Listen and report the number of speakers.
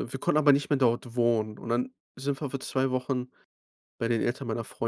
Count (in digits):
1